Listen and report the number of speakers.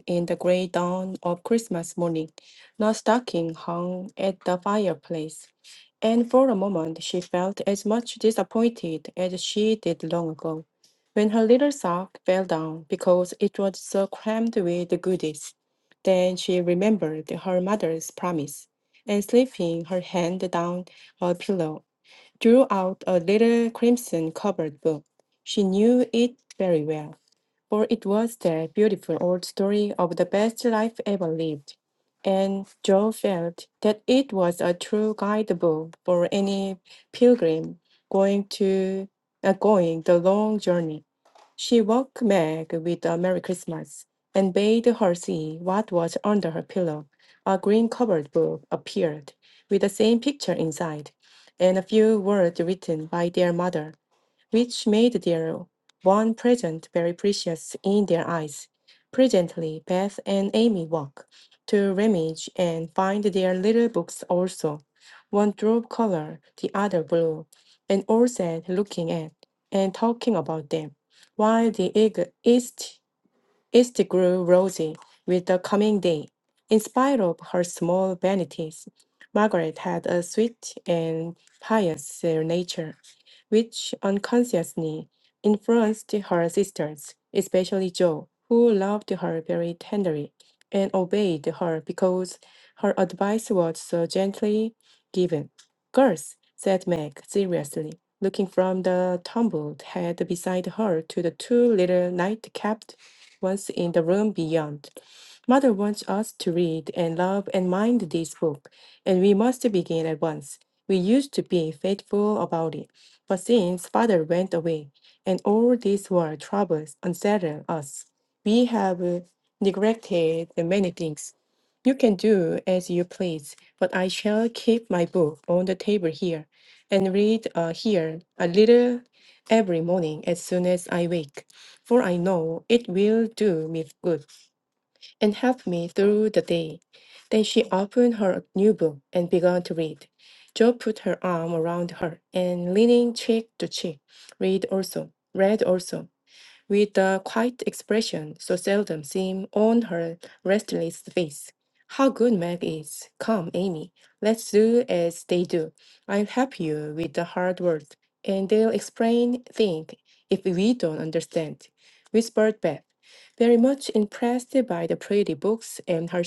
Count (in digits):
1